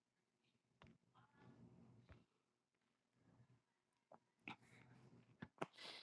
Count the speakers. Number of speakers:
zero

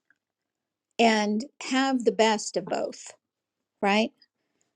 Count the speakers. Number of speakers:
one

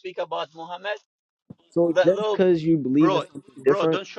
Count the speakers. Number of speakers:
two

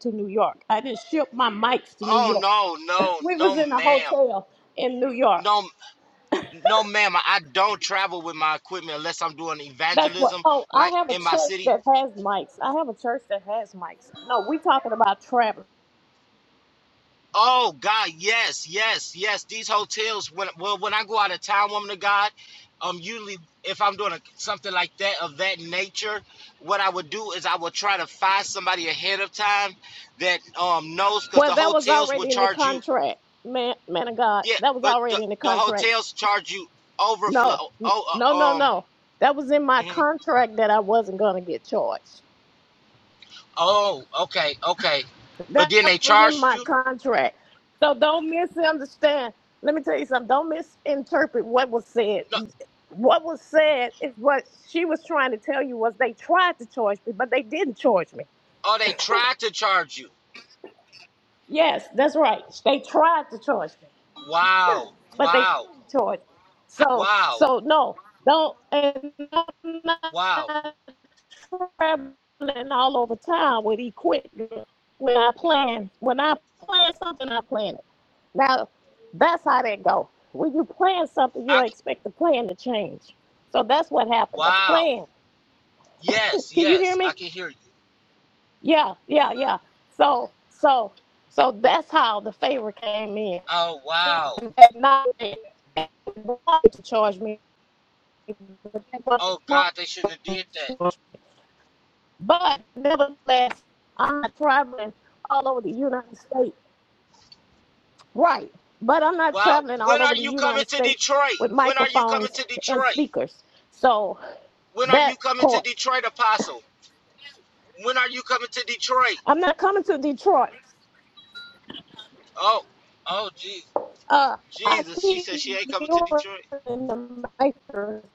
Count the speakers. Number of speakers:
two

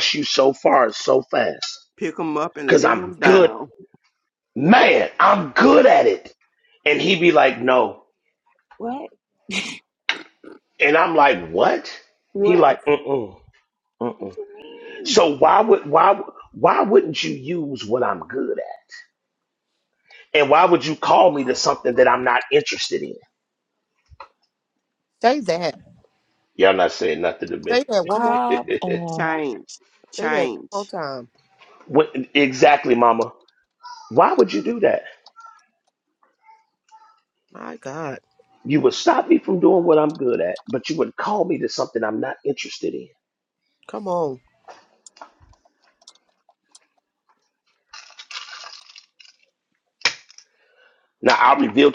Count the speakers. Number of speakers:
five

